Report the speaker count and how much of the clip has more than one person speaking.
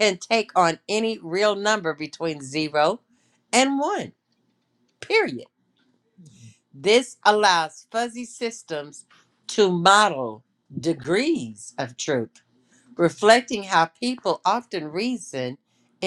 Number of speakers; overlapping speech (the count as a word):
one, no overlap